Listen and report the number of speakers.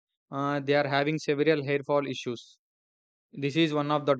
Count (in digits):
1